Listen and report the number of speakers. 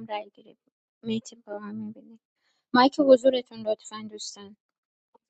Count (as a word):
one